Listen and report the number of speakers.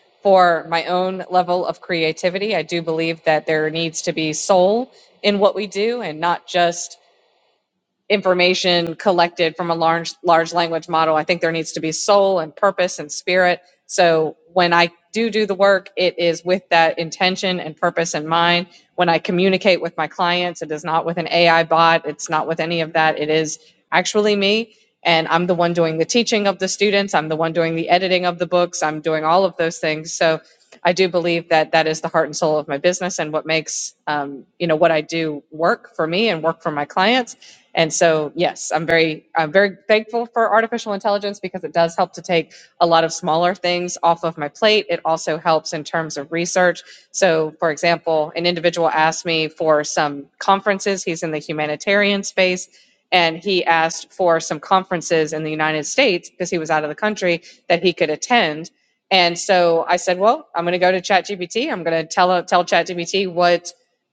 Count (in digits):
1